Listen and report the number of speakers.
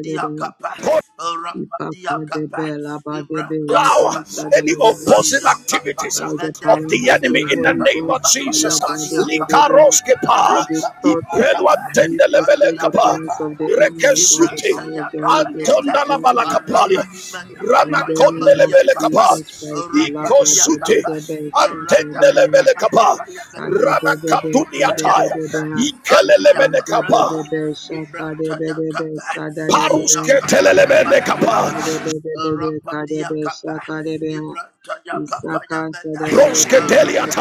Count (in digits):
3